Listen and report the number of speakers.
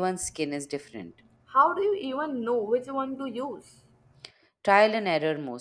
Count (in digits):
2